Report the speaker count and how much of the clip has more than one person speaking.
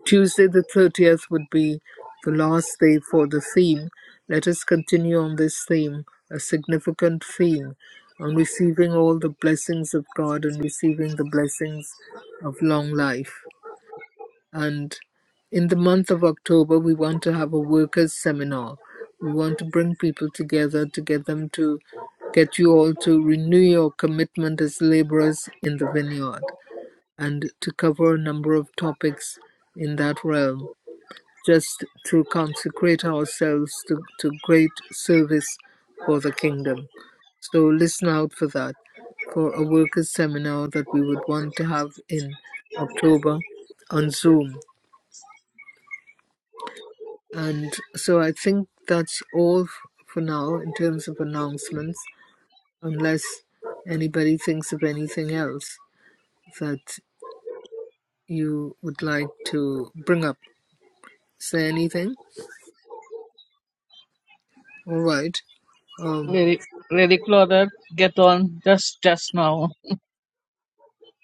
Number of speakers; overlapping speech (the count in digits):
2, under 1%